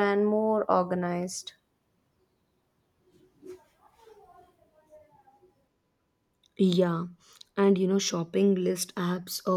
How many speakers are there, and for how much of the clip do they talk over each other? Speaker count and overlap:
two, no overlap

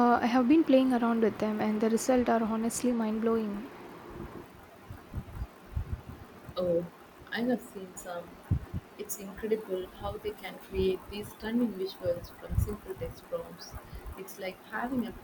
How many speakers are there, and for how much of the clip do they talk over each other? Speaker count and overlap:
two, no overlap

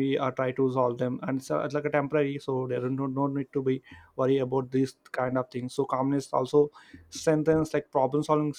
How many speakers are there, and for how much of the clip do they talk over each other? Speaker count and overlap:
one, no overlap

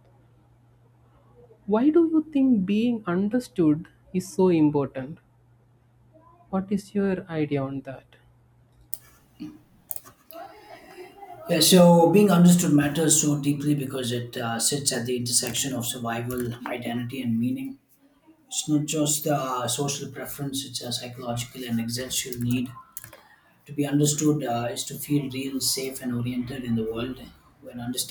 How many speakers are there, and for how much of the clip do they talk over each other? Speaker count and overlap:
two, no overlap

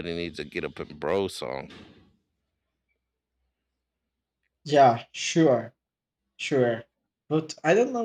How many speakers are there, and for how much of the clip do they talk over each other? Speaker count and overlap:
two, no overlap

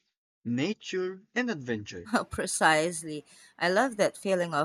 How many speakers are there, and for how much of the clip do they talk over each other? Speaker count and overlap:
two, no overlap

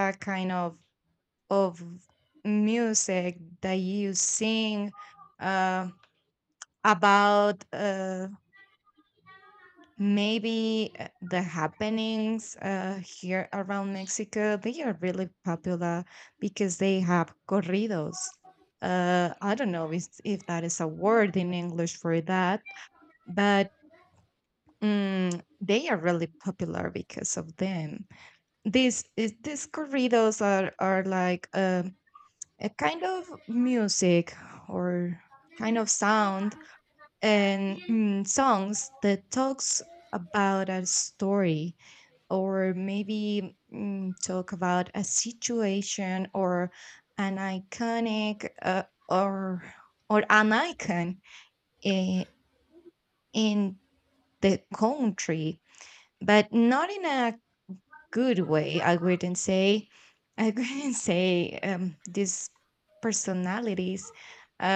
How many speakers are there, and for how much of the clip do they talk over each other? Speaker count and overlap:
one, no overlap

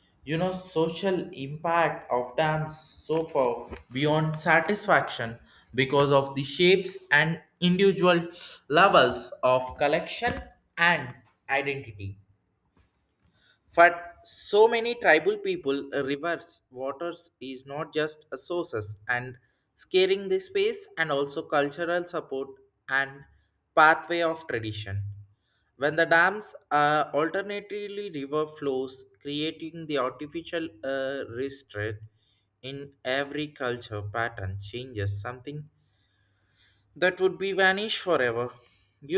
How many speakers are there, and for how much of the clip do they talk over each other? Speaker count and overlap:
one, no overlap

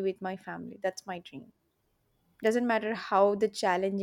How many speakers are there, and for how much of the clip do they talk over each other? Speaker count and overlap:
one, no overlap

